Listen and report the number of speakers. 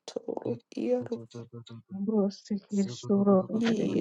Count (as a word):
two